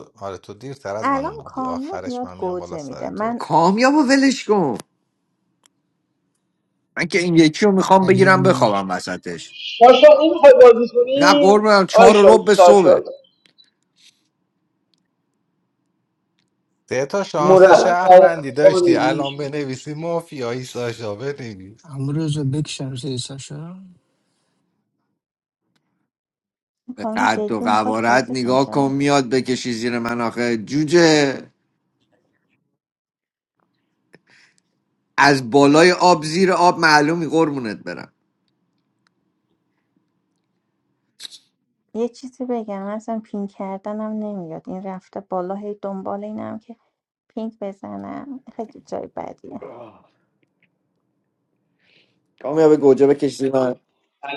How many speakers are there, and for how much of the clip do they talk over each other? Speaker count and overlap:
5, about 15%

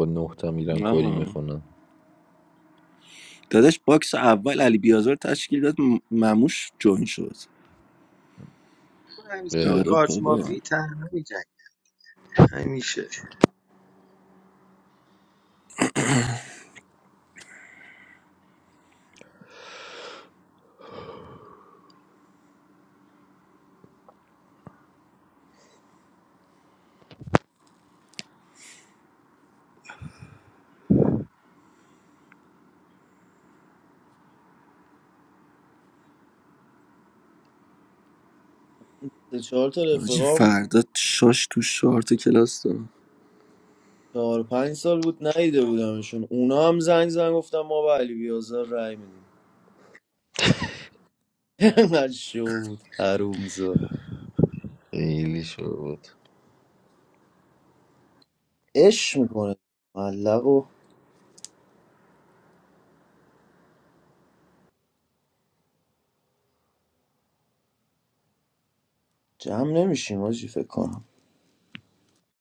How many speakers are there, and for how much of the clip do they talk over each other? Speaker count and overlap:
4, about 3%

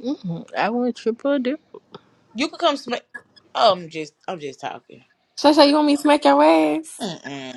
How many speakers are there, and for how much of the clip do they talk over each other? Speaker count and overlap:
3, no overlap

